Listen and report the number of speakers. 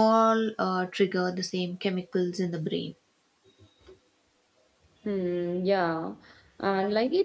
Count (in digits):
2